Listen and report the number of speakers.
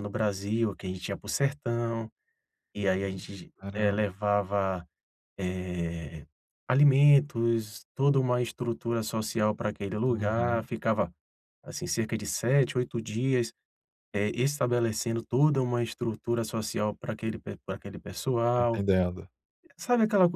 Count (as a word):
two